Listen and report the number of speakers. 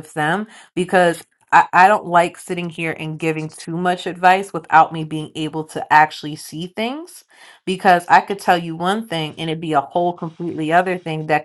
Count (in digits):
1